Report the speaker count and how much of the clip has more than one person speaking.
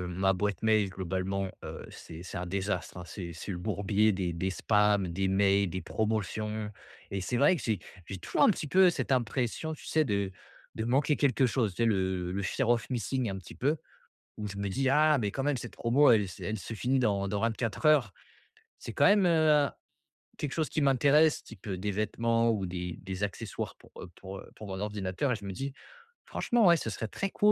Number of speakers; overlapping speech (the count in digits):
1, no overlap